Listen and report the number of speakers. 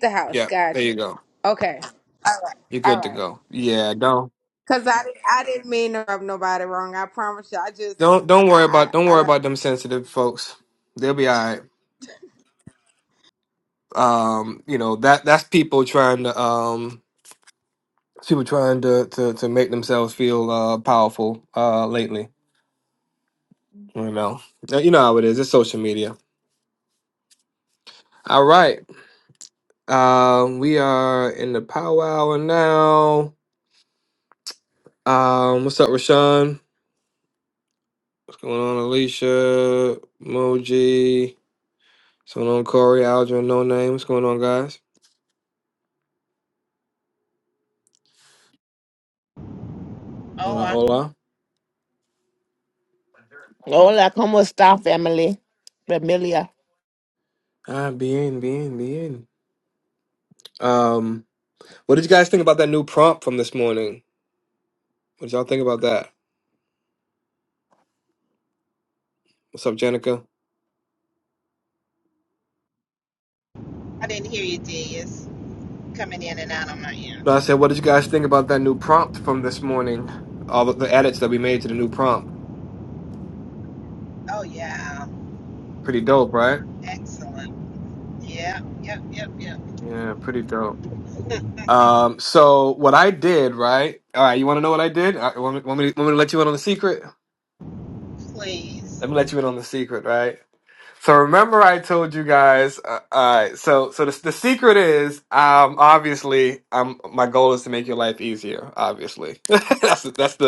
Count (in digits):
4